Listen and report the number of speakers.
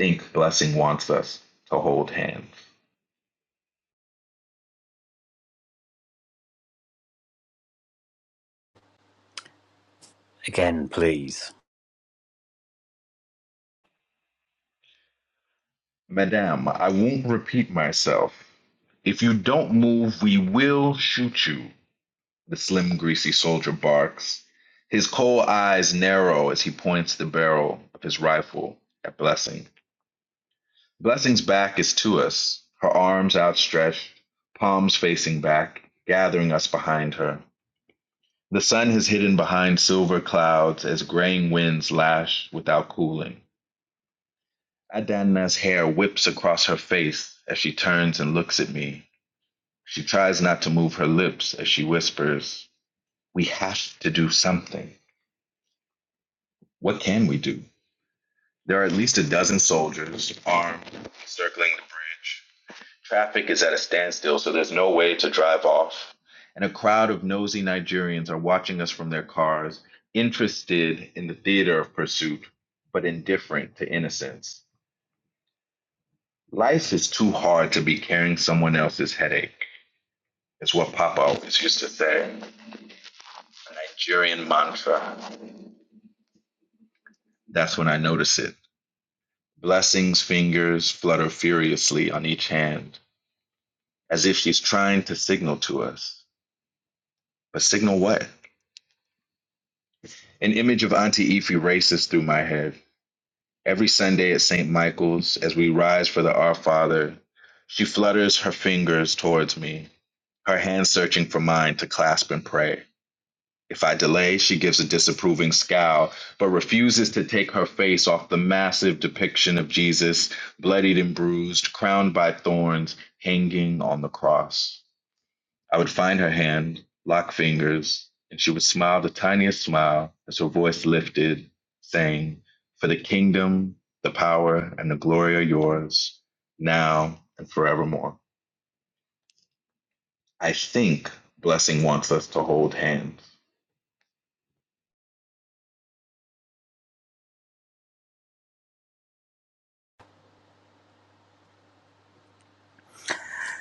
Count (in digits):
2